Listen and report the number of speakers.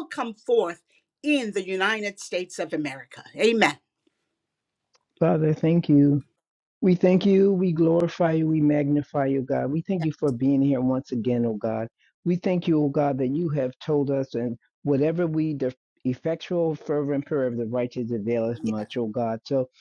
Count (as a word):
two